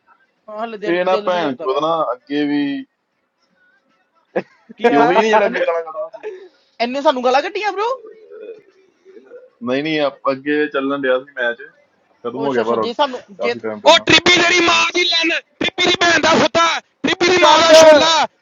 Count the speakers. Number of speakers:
three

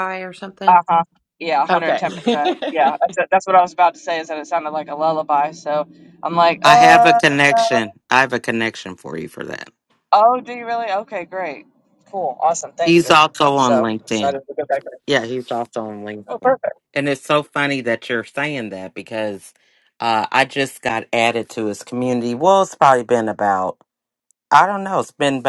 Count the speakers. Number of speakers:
three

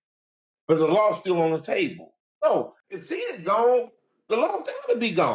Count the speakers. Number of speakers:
one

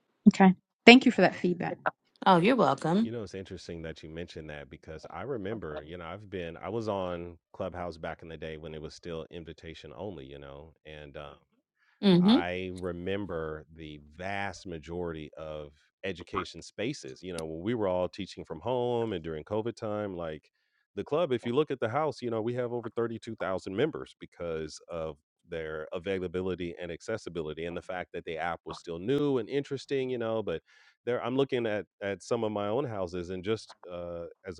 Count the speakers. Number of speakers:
three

